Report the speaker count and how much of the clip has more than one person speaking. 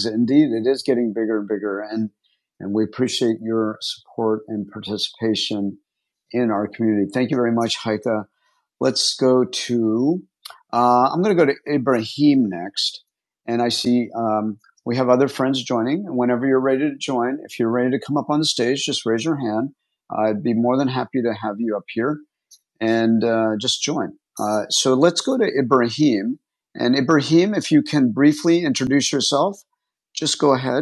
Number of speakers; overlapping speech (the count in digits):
1, no overlap